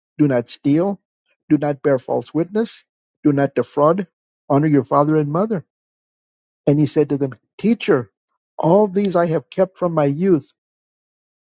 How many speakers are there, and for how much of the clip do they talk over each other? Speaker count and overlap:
one, no overlap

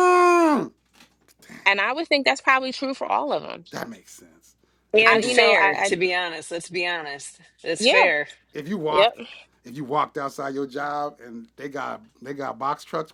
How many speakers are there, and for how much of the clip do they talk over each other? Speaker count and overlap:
three, about 11%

